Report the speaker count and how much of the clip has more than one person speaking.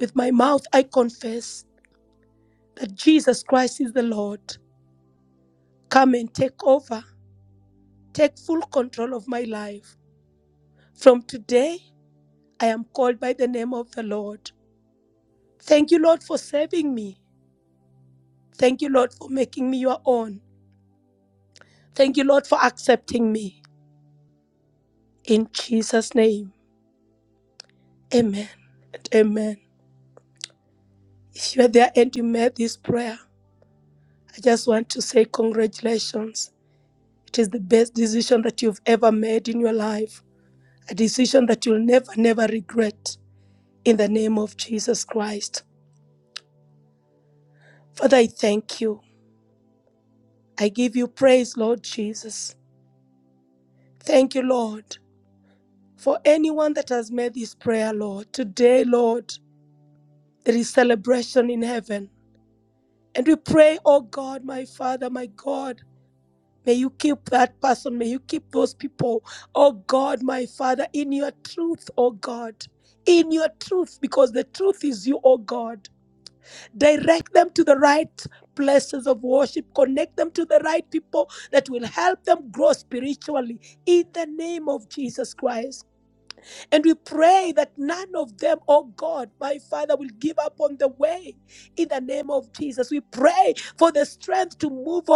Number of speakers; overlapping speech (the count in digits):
1, no overlap